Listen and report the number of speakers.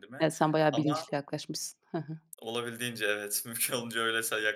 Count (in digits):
2